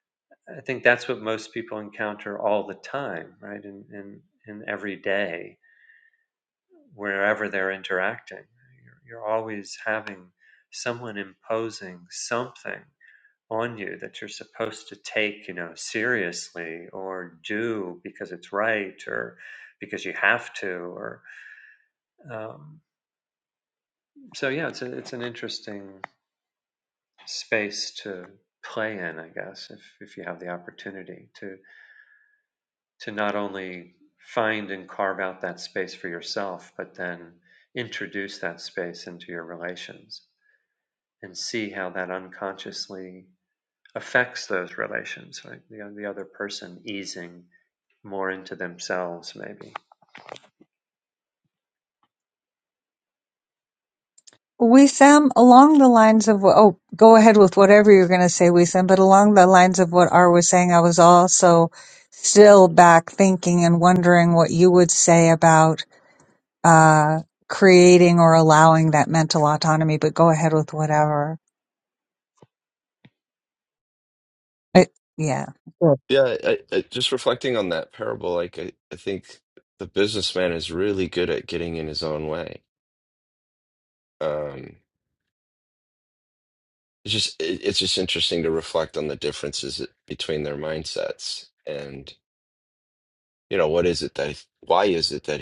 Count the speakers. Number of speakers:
3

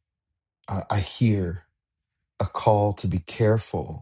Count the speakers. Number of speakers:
1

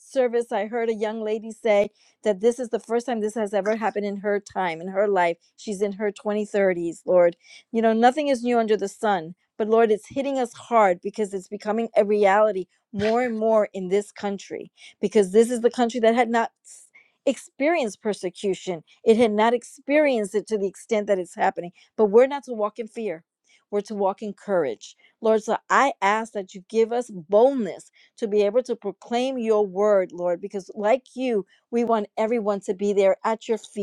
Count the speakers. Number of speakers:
1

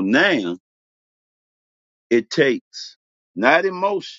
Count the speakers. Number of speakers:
1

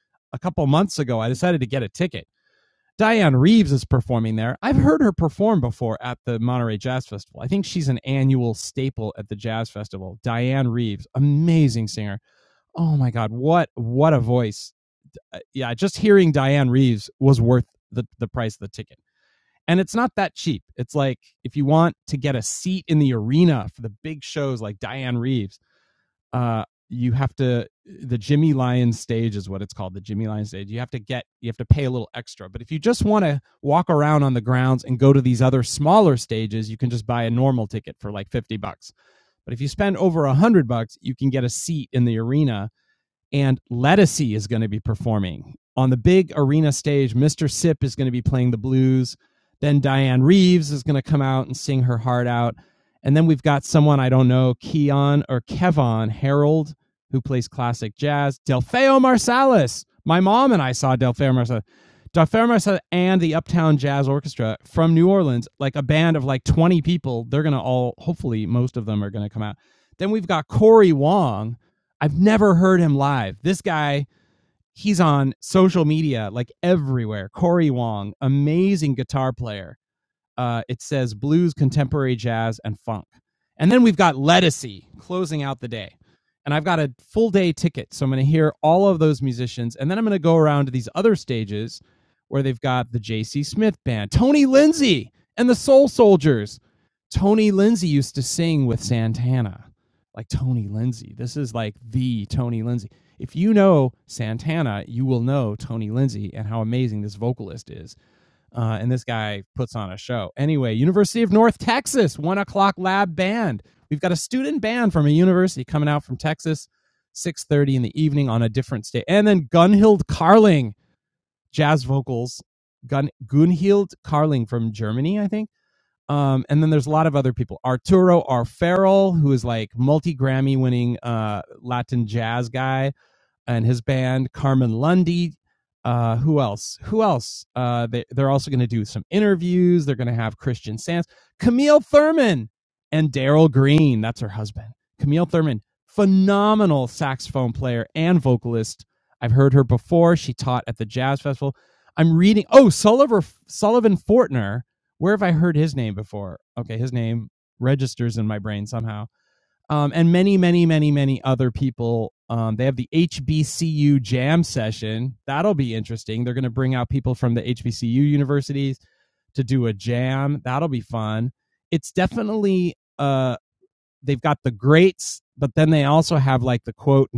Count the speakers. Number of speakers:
1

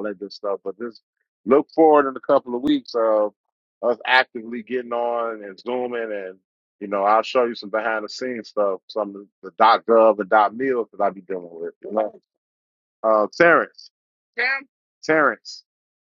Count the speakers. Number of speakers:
1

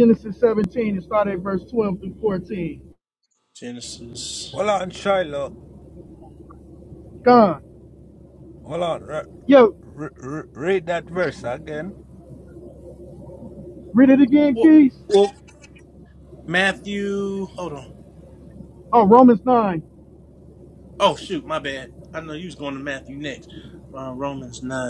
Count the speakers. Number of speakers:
3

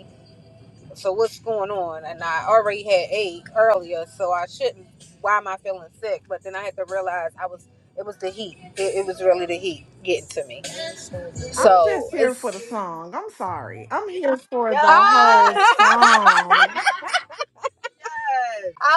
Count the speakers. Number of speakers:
2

